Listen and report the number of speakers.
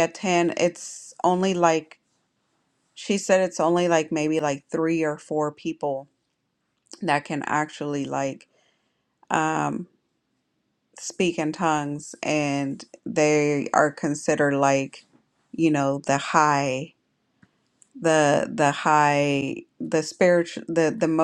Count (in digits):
1